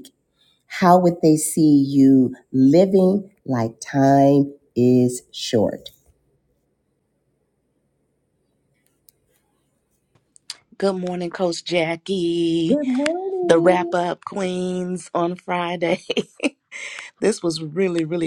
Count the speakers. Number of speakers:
2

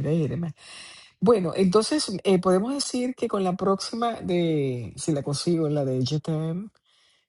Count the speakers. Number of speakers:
1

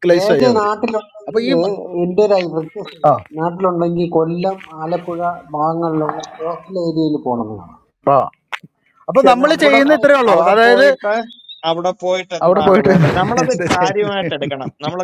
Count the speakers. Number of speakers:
3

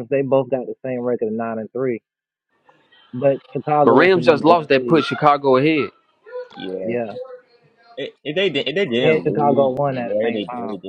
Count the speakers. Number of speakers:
3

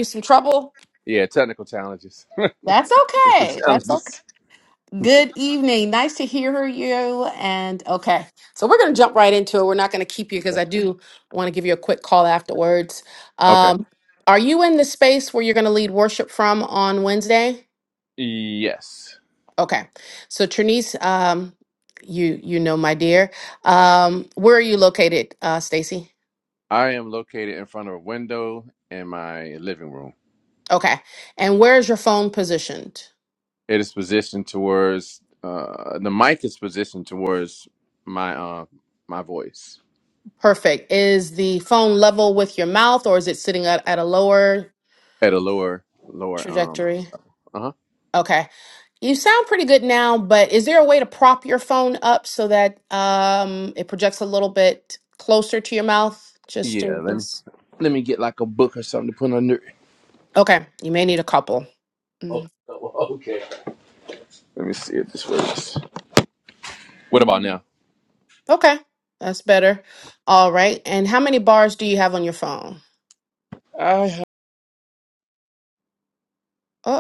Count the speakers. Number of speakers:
2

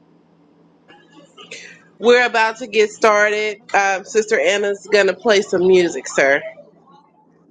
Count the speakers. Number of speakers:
1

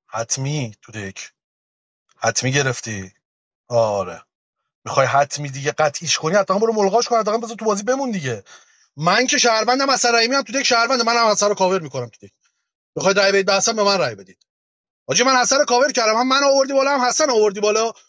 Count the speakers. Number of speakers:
1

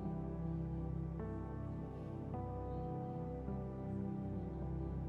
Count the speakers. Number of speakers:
0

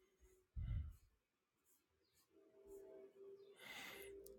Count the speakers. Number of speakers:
0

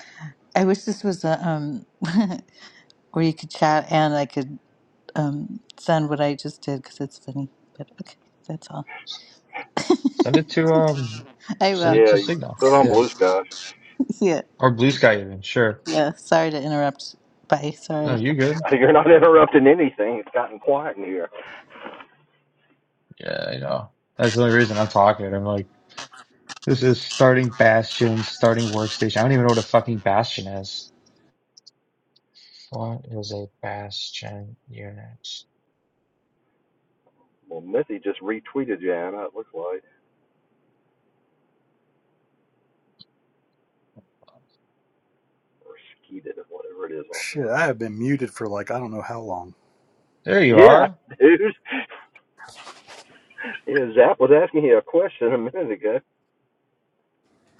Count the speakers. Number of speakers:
4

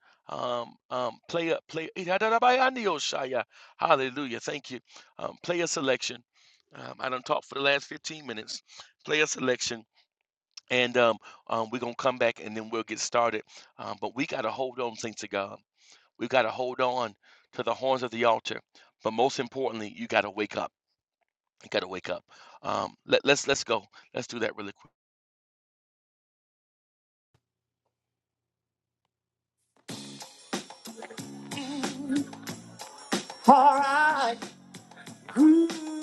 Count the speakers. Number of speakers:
2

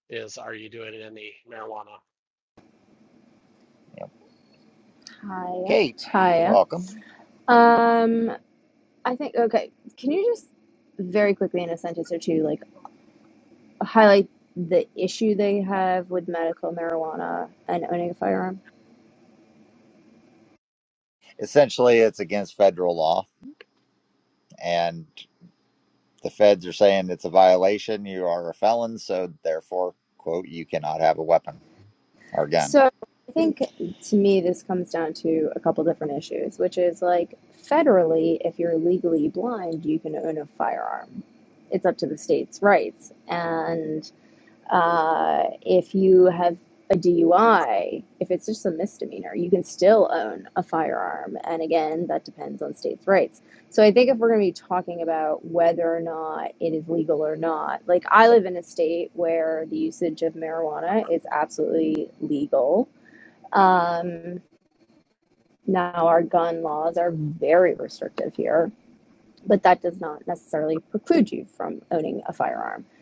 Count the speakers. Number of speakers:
3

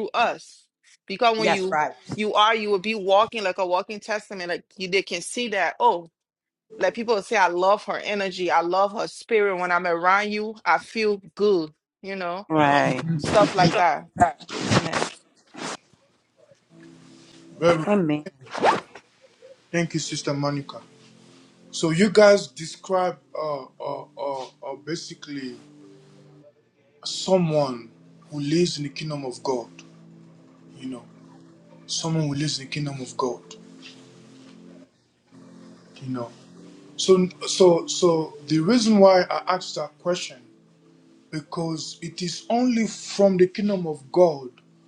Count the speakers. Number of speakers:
3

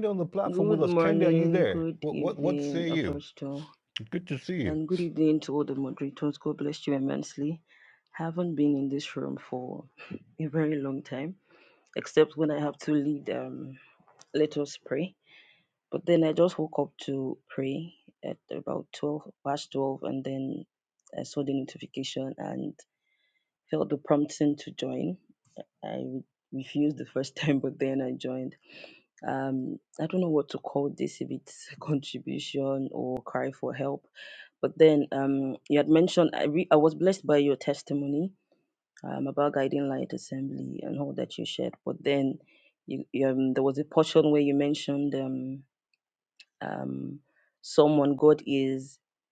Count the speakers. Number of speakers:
2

